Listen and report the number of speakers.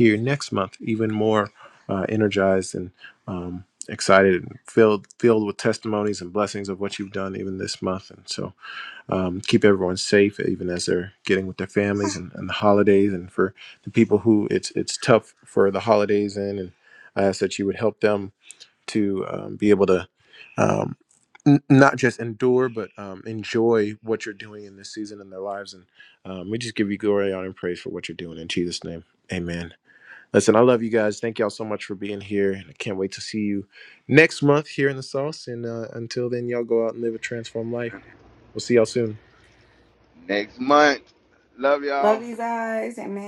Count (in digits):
3